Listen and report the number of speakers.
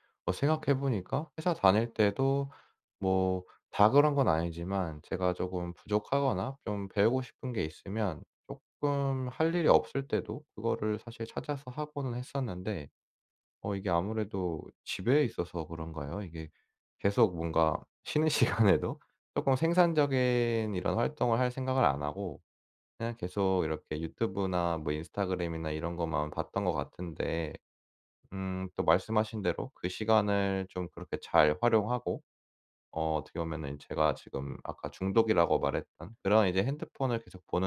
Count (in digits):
1